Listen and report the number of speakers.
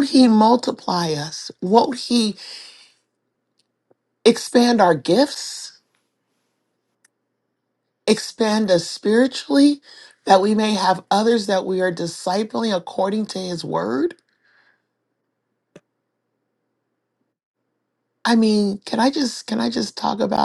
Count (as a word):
one